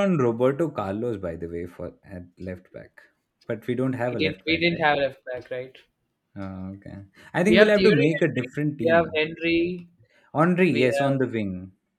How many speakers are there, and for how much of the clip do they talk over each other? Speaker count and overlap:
2, about 23%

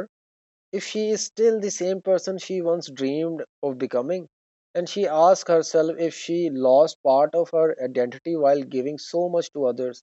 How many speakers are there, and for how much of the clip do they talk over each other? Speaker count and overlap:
1, no overlap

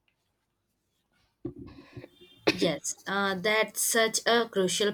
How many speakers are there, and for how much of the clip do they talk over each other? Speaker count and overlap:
1, no overlap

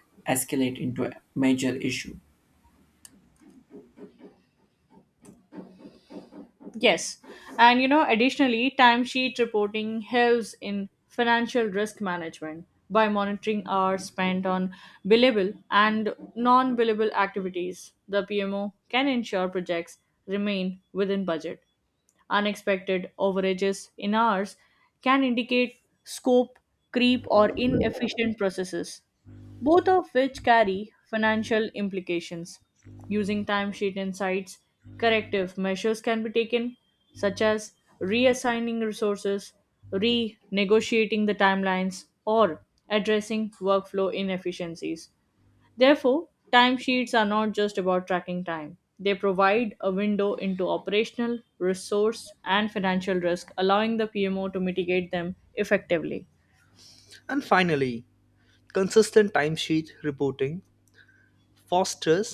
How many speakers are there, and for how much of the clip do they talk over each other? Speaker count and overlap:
3, no overlap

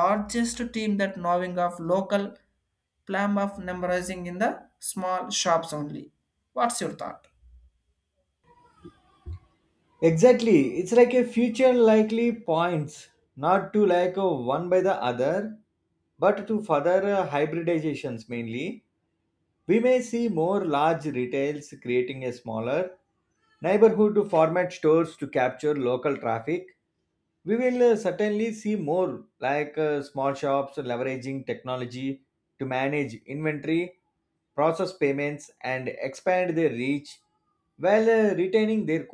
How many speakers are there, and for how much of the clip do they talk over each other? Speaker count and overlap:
2, no overlap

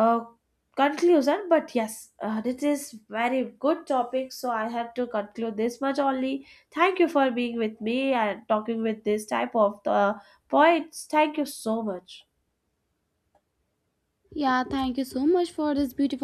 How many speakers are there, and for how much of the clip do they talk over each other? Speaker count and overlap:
2, no overlap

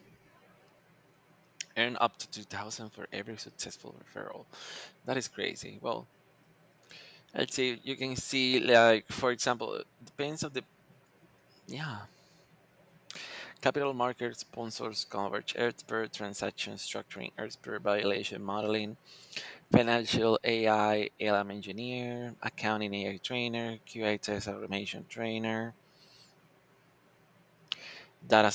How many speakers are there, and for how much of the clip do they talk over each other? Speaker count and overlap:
1, no overlap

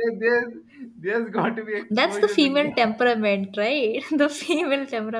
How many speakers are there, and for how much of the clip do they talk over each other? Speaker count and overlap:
2, about 20%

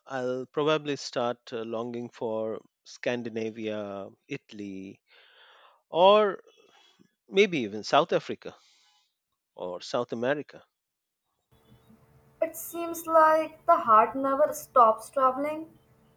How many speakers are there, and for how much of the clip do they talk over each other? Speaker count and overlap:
2, no overlap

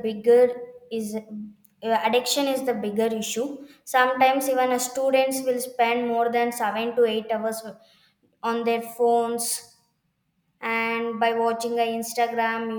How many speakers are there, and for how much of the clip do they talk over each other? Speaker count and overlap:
1, no overlap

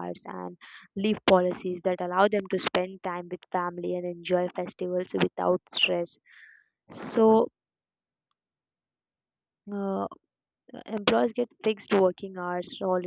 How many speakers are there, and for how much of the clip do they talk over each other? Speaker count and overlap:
1, no overlap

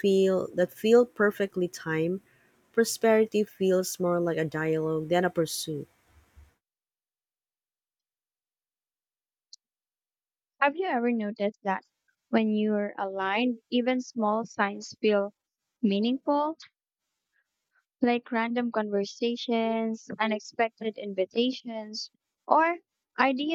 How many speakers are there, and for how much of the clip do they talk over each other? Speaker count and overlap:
2, no overlap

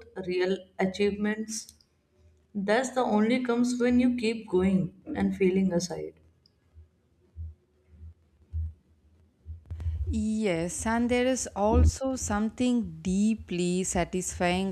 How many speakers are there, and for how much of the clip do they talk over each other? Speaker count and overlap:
2, no overlap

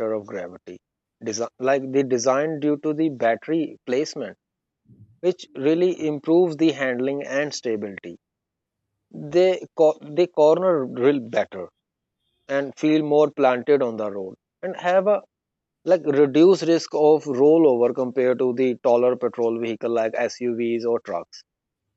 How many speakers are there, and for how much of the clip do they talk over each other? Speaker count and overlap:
1, no overlap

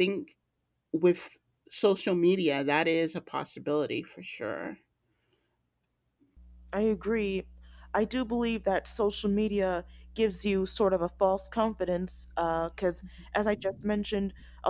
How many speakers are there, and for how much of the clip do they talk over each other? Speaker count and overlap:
2, no overlap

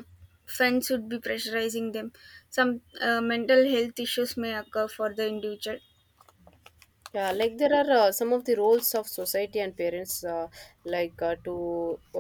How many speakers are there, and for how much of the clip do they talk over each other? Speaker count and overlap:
2, about 1%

